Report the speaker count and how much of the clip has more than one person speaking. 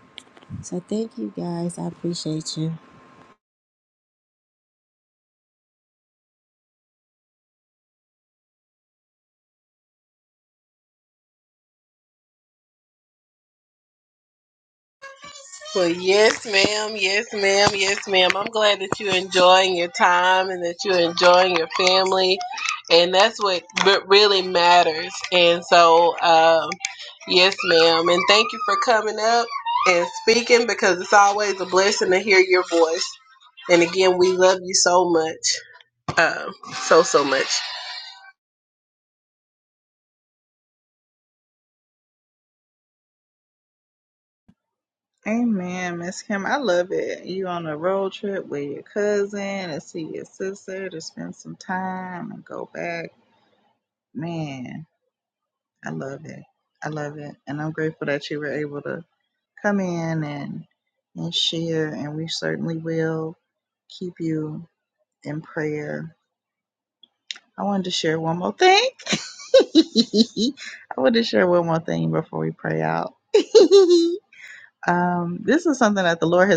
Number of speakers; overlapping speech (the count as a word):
three, no overlap